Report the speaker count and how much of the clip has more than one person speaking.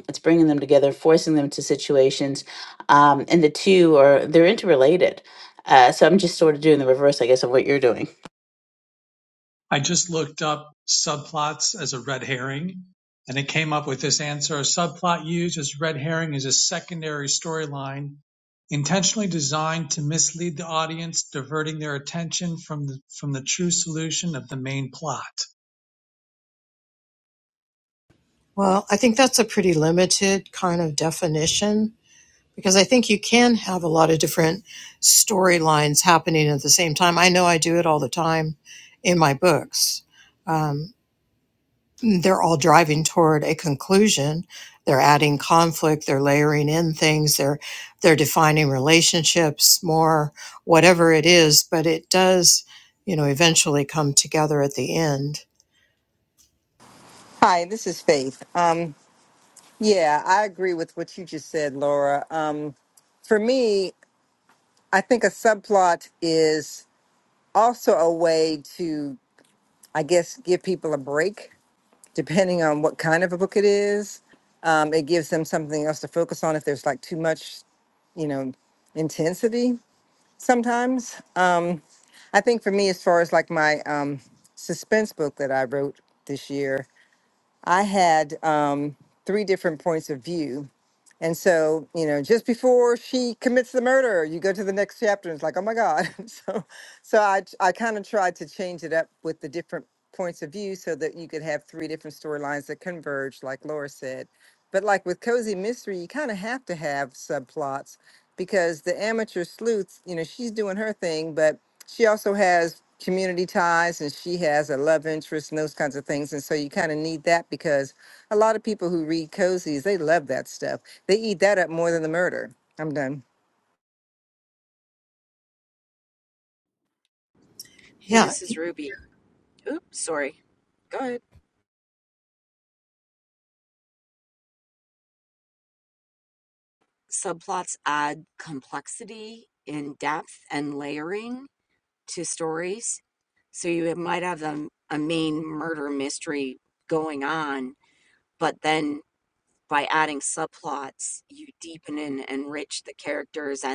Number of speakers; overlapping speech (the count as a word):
five, under 1%